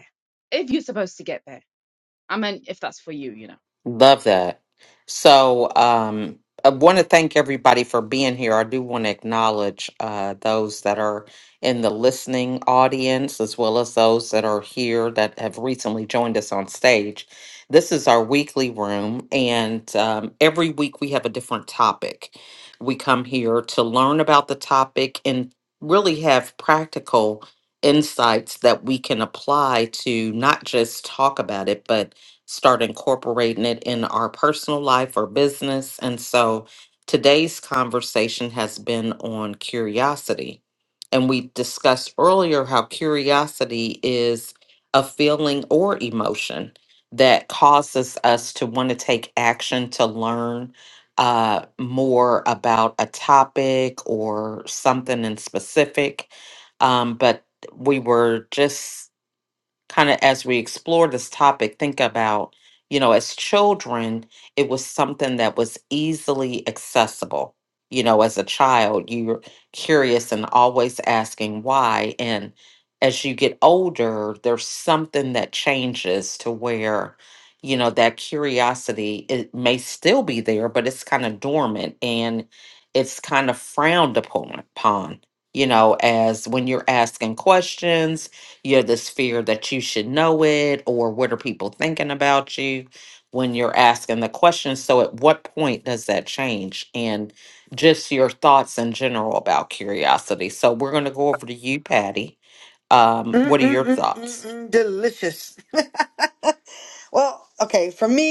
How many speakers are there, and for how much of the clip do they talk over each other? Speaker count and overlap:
3, about 1%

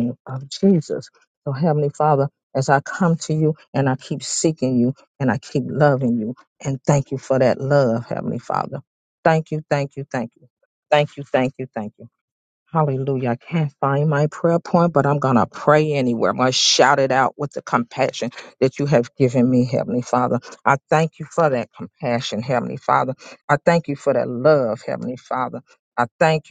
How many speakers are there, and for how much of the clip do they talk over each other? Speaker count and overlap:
1, no overlap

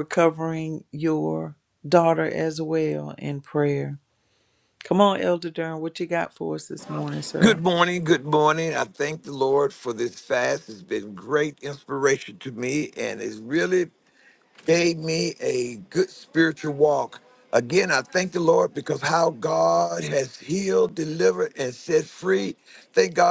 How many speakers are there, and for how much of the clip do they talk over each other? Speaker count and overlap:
2, about 1%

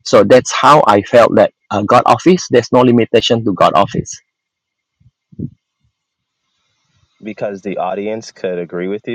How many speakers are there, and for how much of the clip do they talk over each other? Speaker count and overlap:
2, no overlap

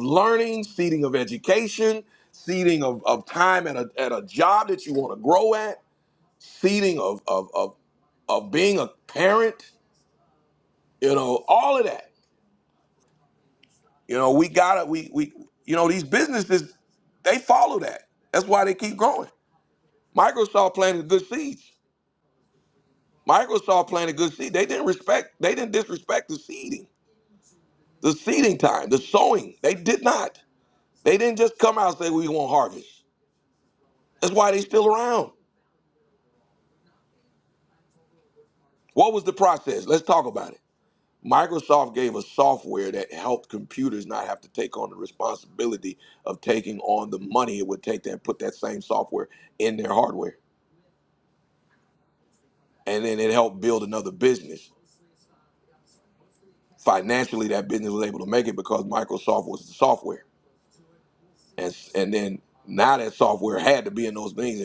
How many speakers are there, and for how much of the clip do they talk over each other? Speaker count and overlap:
1, no overlap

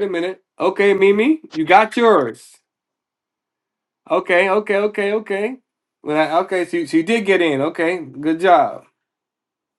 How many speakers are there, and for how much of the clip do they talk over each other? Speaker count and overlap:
1, no overlap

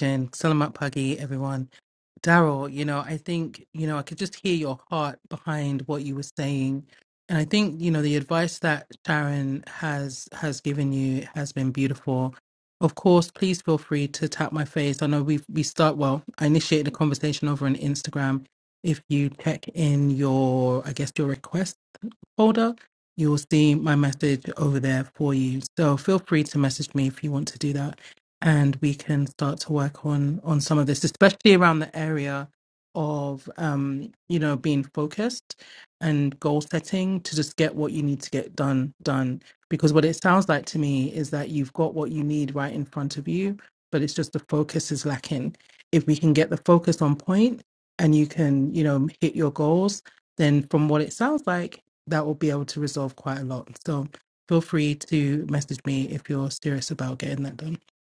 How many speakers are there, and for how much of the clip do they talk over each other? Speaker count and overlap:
1, no overlap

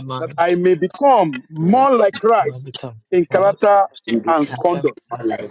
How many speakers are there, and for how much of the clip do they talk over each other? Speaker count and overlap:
3, about 37%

